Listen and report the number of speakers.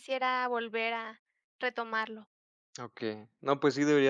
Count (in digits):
2